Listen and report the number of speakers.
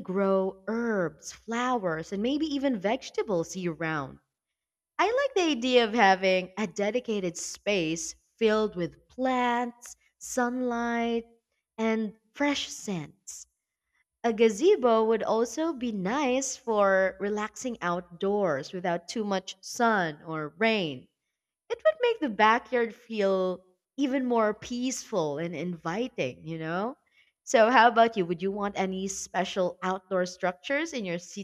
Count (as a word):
one